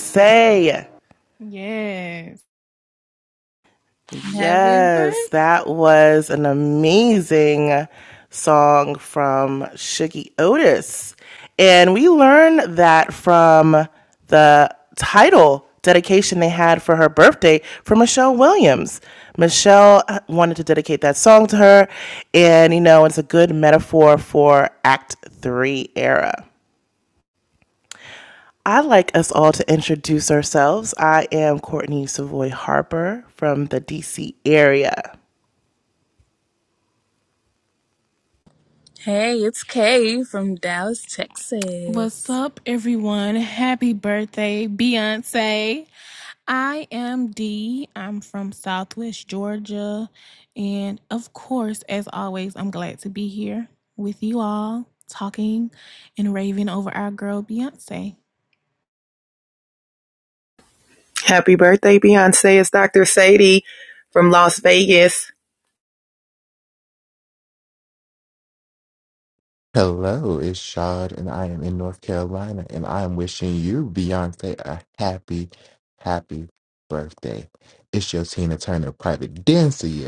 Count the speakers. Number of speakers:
5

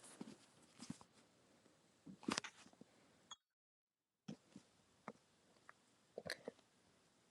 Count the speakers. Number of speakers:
0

